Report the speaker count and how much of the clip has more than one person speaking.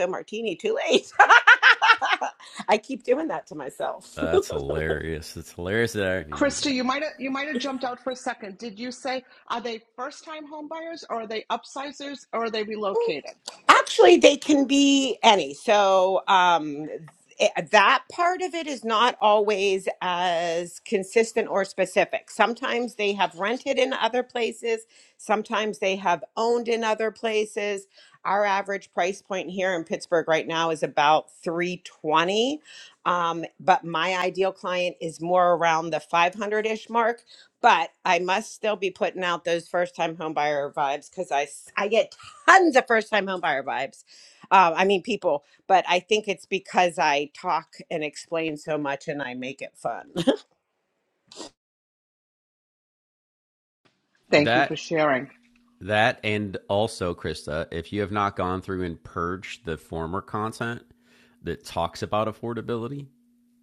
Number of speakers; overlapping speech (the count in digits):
3, about 1%